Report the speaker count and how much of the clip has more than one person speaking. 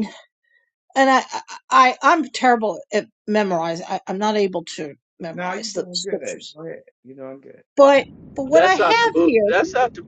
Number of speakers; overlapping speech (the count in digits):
3, about 22%